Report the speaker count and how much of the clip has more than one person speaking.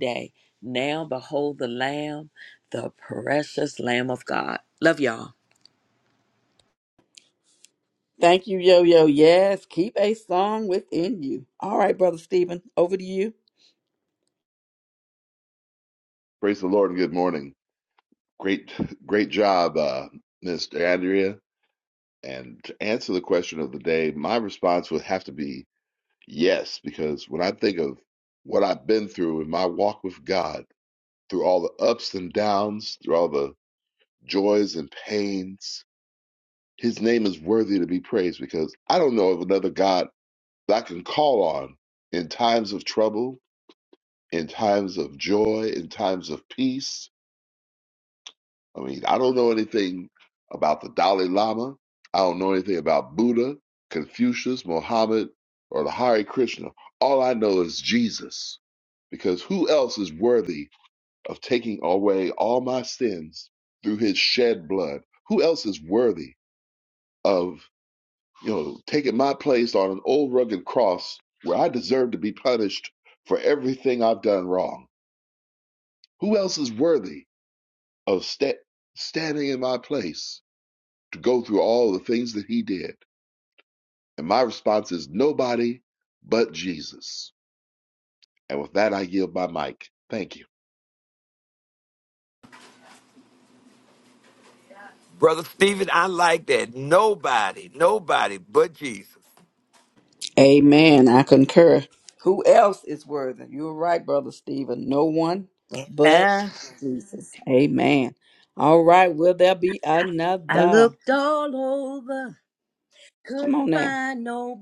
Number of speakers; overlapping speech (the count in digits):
5, about 1%